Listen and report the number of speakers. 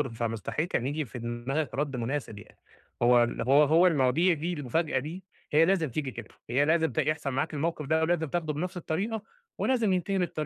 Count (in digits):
1